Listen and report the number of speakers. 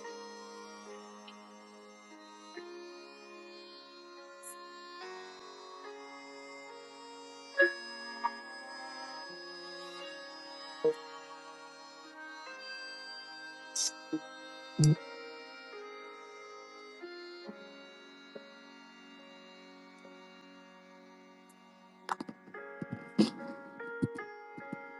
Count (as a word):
zero